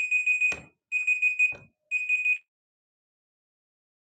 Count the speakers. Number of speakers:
0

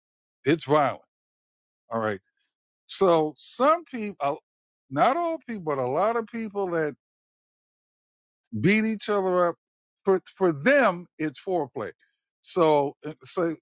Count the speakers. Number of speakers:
1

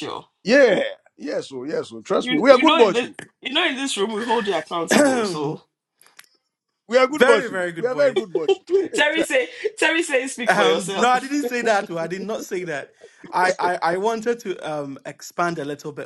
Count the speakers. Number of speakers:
3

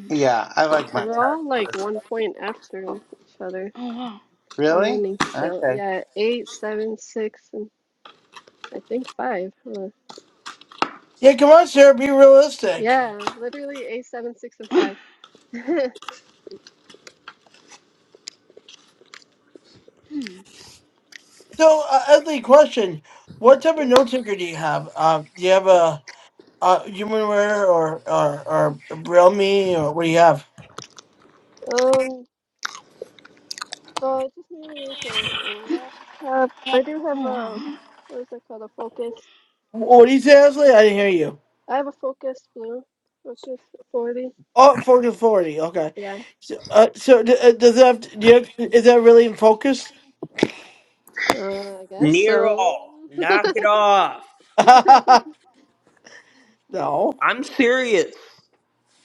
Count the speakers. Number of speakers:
5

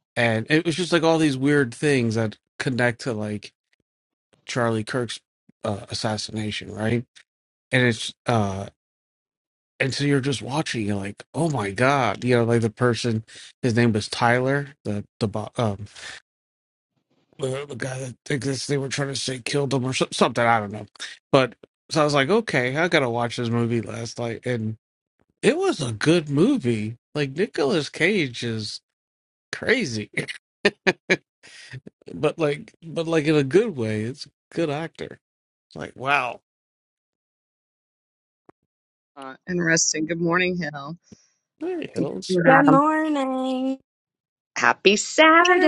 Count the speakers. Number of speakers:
3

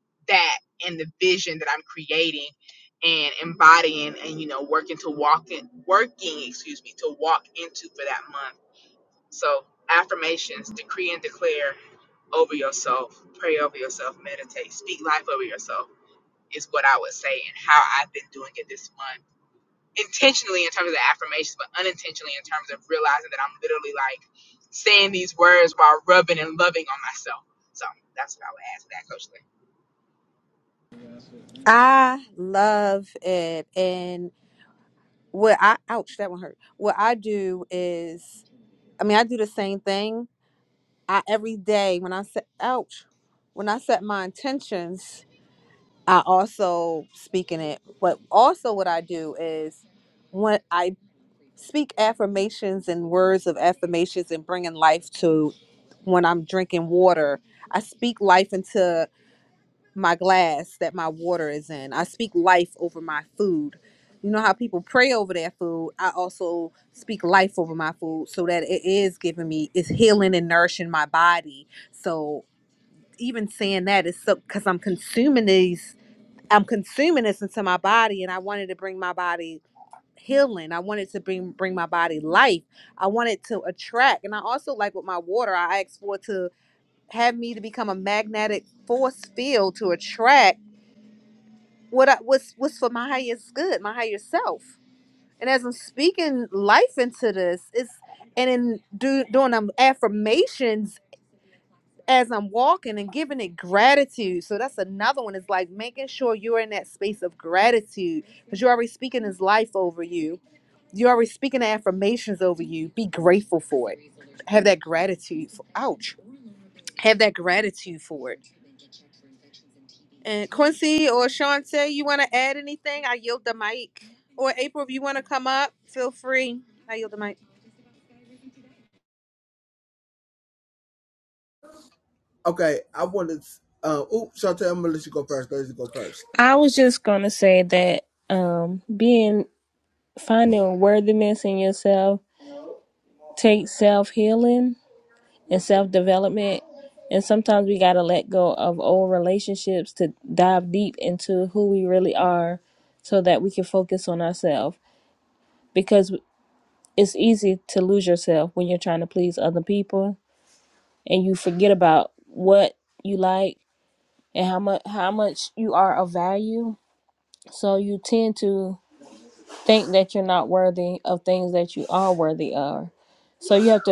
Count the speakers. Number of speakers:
4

